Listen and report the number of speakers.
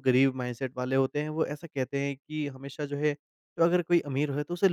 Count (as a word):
one